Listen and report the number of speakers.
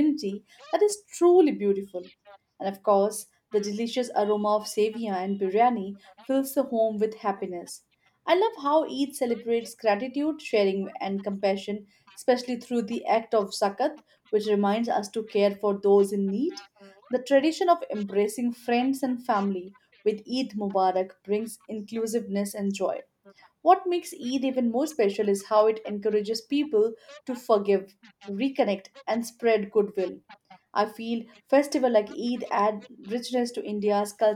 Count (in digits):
1